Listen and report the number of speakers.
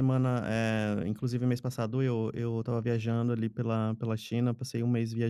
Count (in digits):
1